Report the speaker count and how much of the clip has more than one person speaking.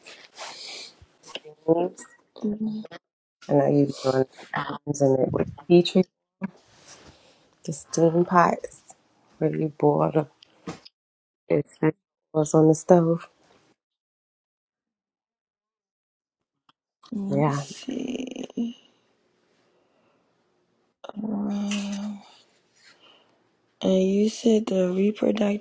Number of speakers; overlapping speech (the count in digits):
2, about 1%